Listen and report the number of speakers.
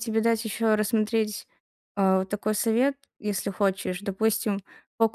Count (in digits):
1